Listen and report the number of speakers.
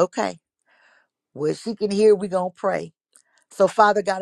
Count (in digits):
1